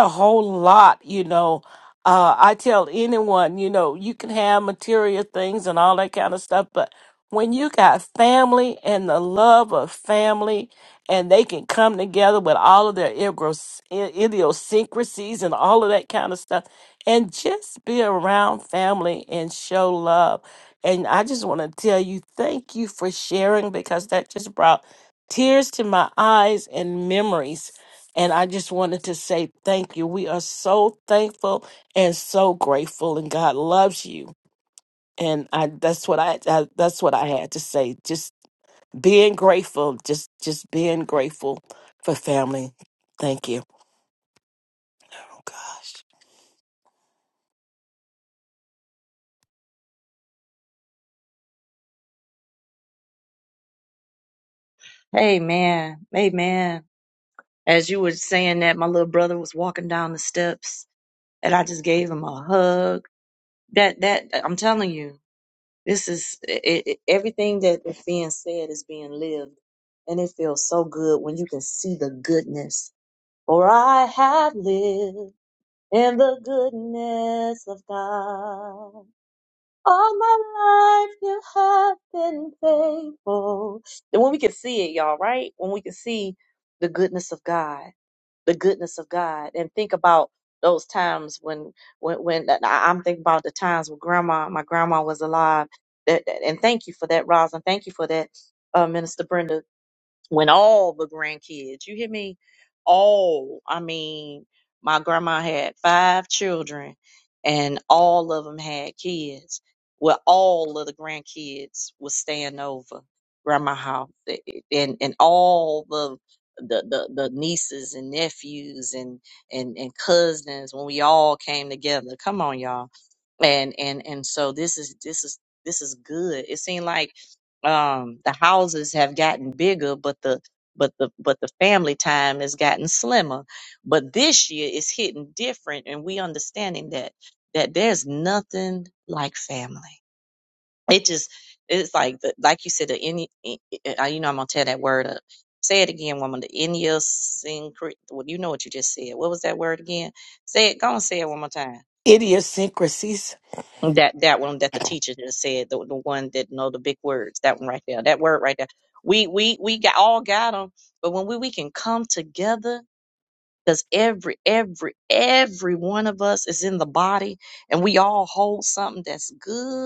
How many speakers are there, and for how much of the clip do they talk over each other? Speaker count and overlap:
2, no overlap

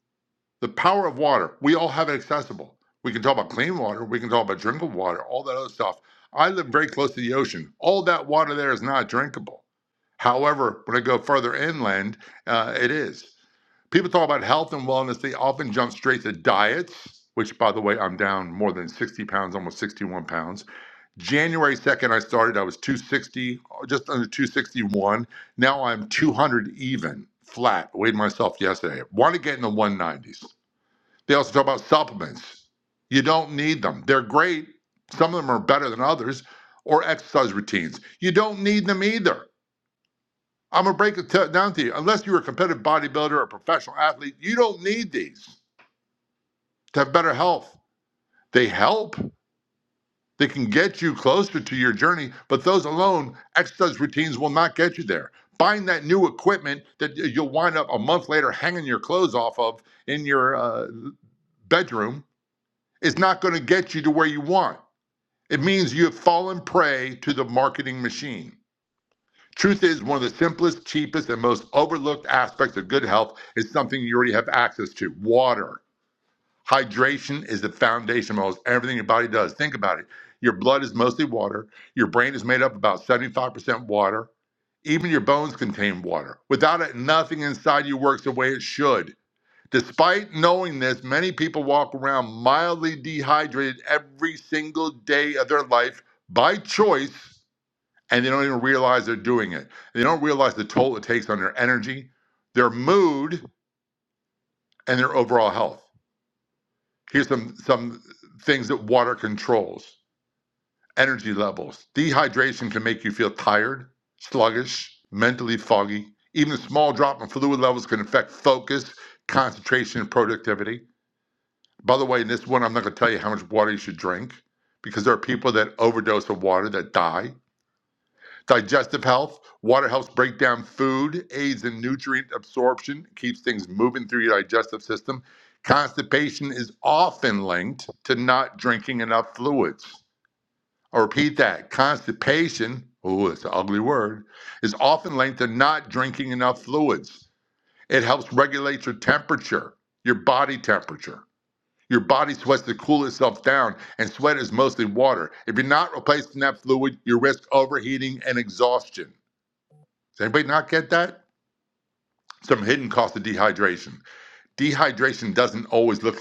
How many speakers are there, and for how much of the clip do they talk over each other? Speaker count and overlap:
1, no overlap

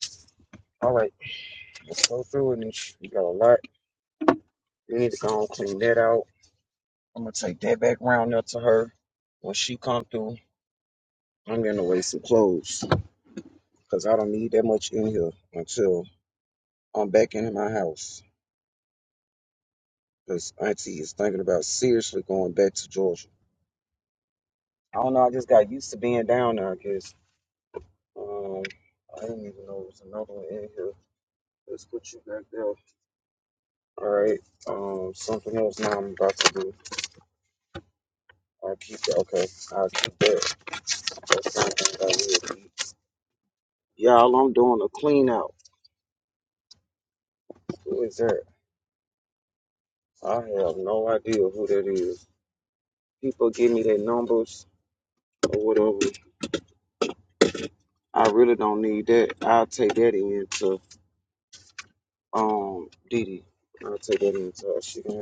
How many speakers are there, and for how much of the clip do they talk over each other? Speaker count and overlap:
1, no overlap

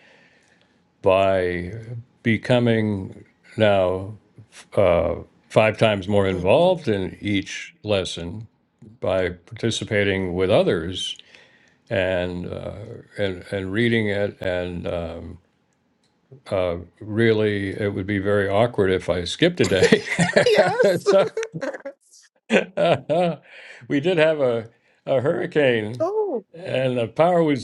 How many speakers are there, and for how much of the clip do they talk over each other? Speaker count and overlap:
2, about 2%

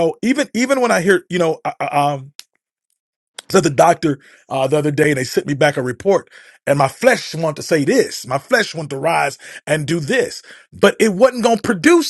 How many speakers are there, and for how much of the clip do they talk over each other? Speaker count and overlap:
1, no overlap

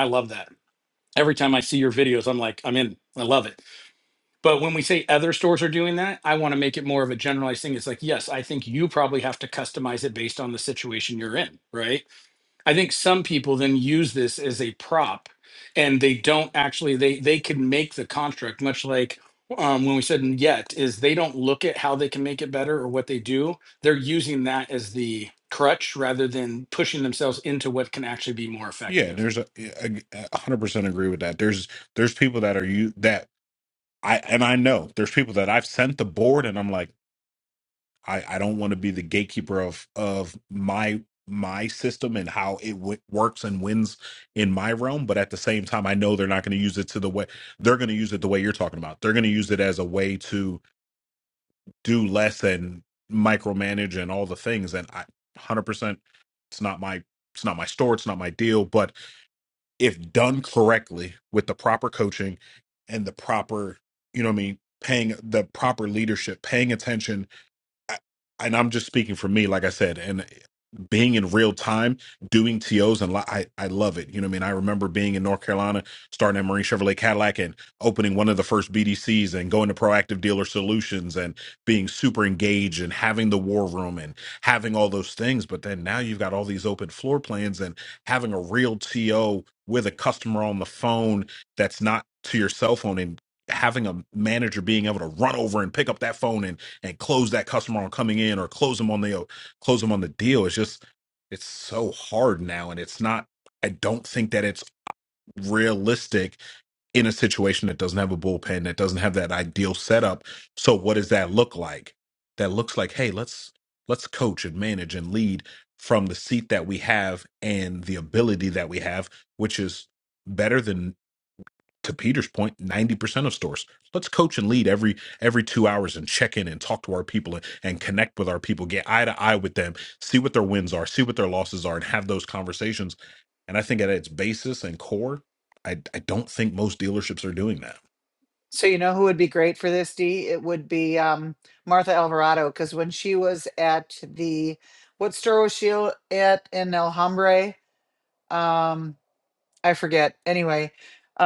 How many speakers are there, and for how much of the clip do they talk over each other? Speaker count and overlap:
3, under 1%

